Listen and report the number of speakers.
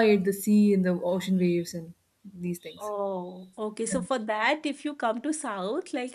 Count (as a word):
two